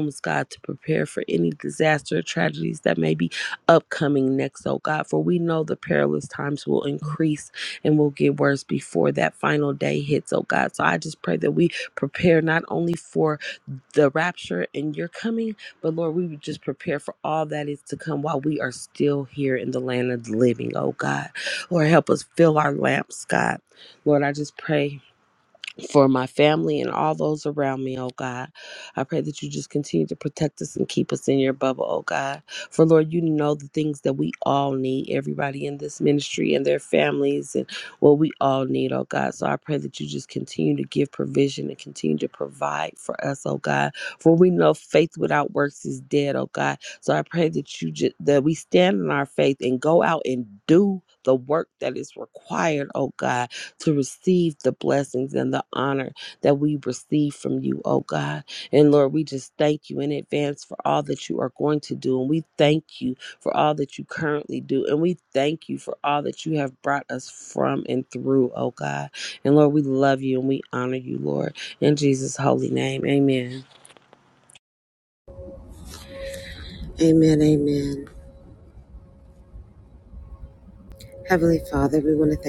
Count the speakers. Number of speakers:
2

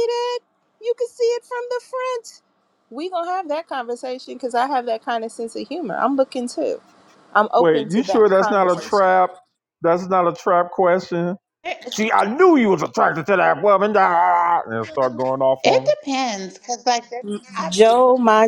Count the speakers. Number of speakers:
3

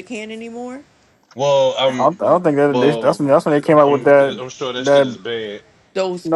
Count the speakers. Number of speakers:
3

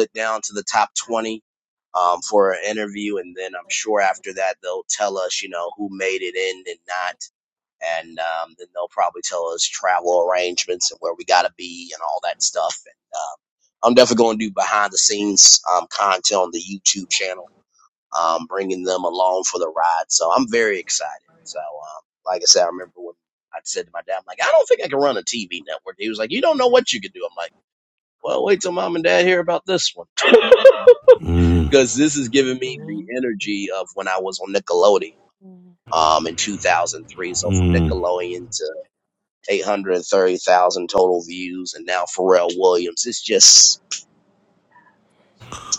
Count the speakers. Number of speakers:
2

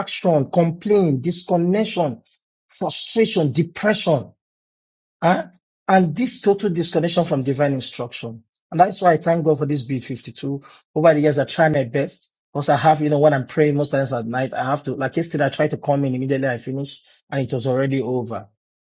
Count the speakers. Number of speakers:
1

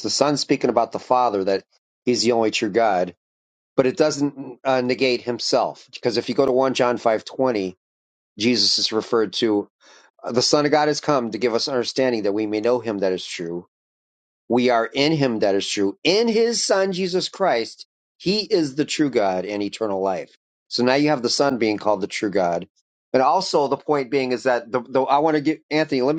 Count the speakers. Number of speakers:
1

